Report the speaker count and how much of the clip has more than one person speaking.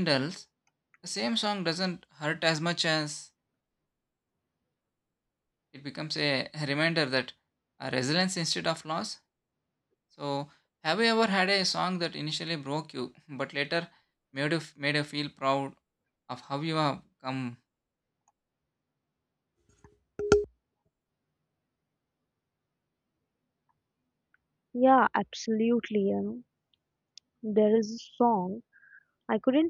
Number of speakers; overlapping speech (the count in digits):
2, no overlap